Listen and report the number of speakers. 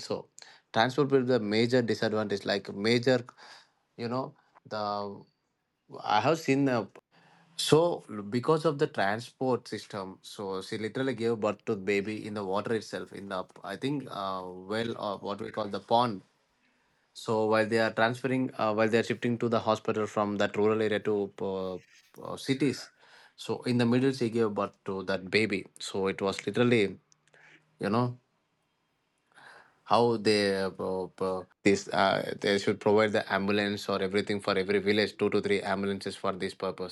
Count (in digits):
1